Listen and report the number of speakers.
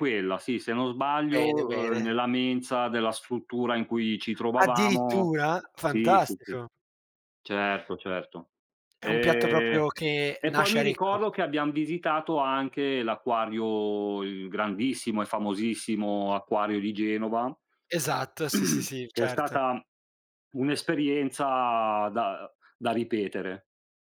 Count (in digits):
2